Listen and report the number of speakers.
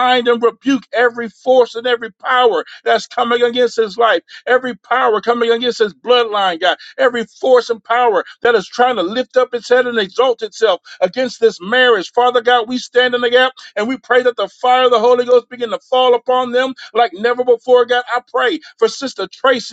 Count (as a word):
one